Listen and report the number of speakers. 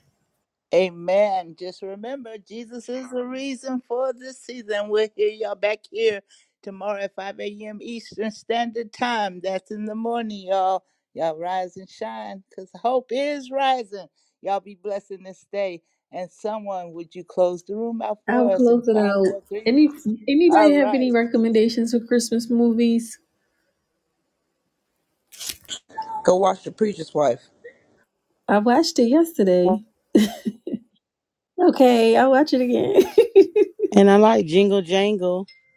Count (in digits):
4